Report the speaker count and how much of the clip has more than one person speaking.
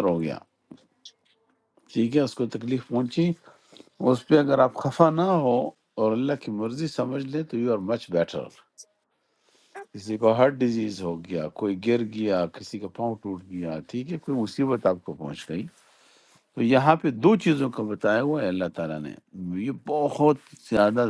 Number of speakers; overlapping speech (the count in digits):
1, no overlap